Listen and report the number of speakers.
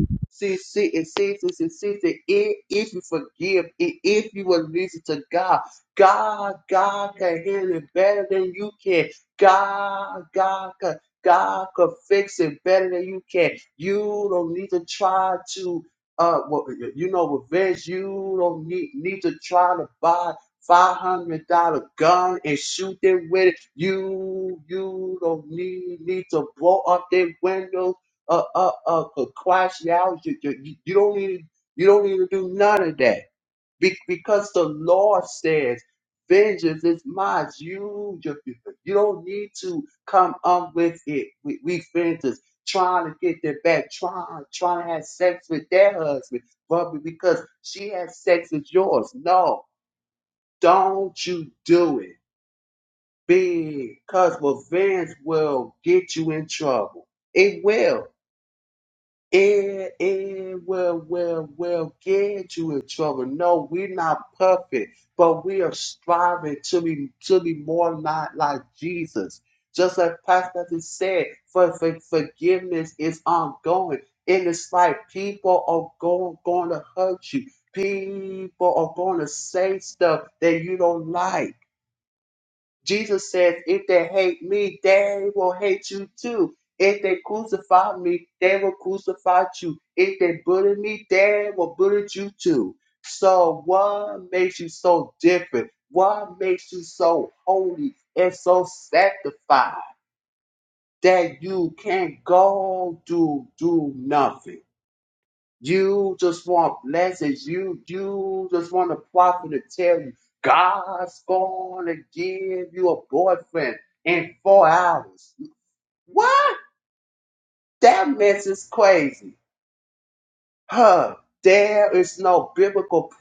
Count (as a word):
one